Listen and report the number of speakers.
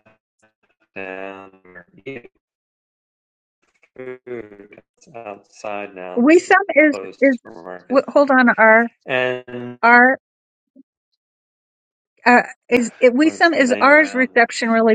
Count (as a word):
two